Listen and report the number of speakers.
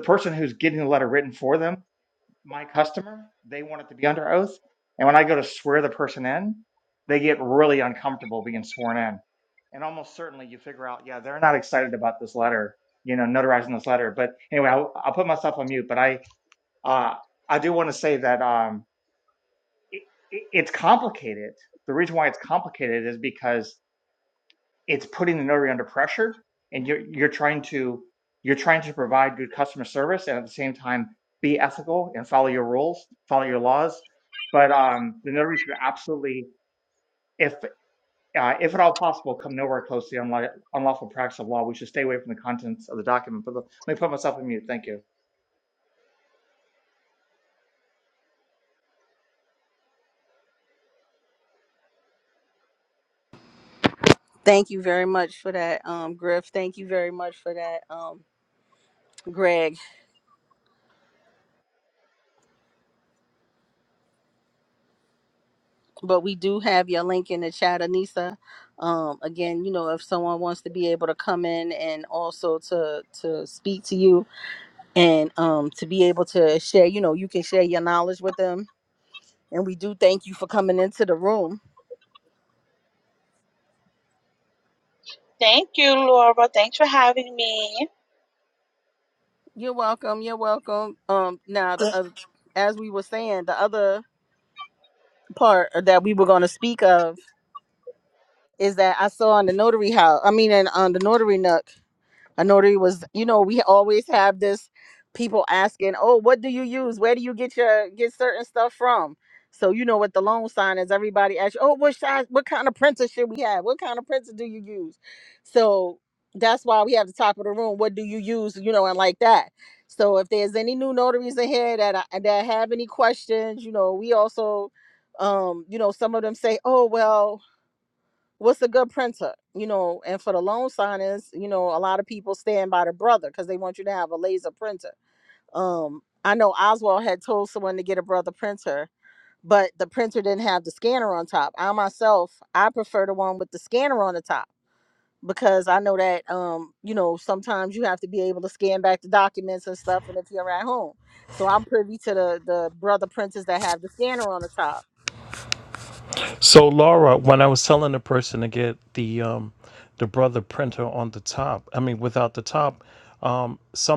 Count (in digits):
4